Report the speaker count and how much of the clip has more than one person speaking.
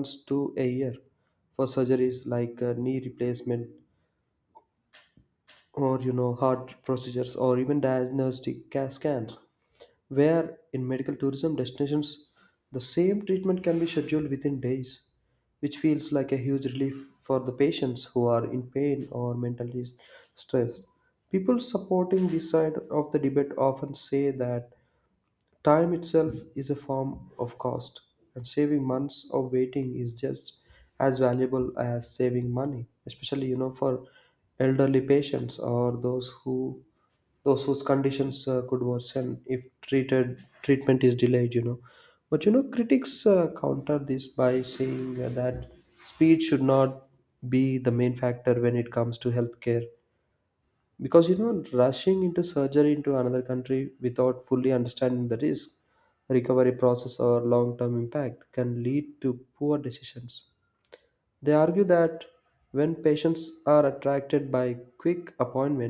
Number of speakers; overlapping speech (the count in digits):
1, no overlap